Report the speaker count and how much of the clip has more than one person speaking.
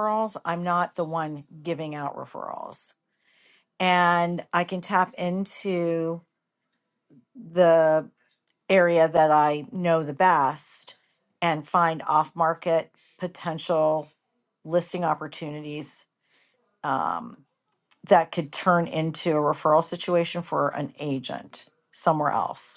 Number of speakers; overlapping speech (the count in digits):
1, no overlap